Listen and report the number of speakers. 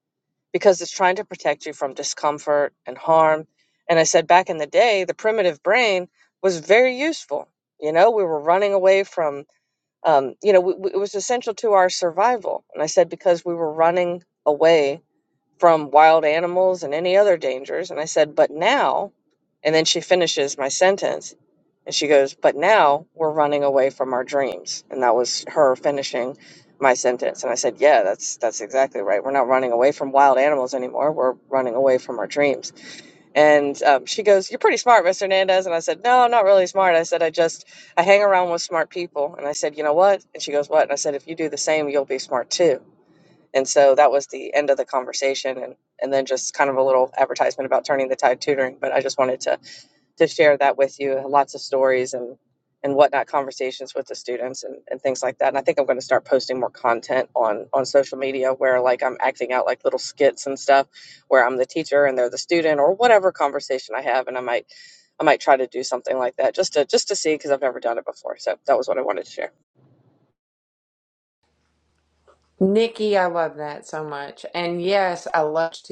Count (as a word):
two